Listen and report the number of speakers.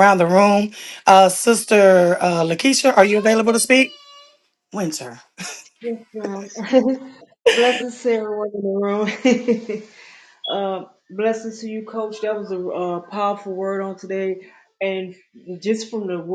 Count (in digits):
2